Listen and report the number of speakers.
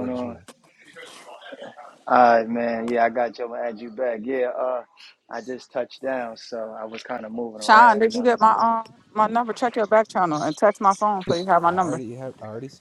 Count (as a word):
three